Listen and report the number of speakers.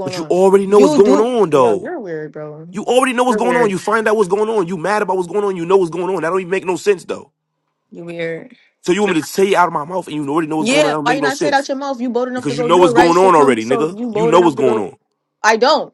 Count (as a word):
two